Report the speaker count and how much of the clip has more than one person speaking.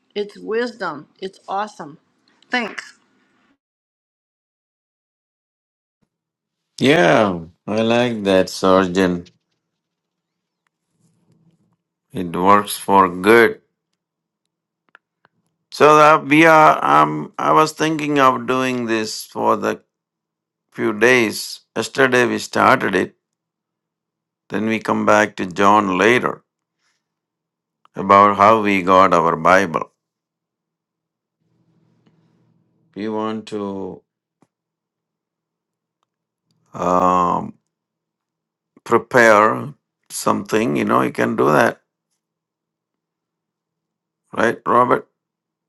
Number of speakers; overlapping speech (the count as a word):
two, no overlap